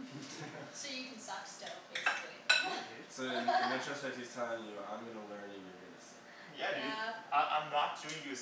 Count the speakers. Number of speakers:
three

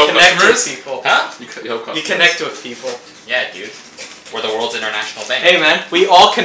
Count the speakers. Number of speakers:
three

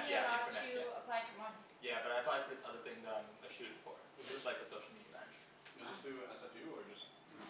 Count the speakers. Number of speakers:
three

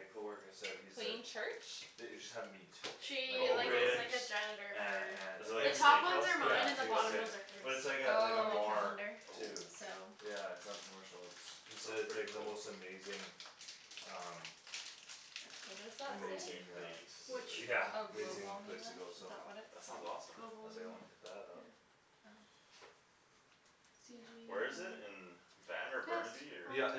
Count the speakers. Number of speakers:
four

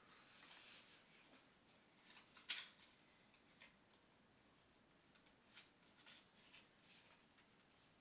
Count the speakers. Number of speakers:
zero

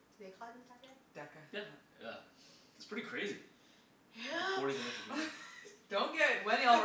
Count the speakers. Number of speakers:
three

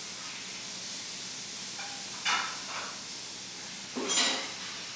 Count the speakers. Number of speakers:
zero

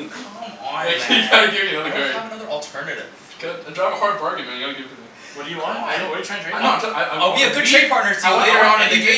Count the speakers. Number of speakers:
three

